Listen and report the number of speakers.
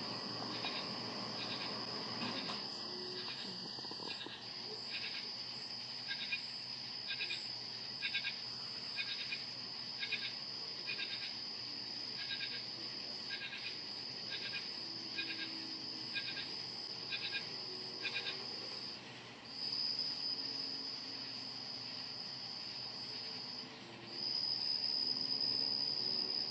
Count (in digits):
0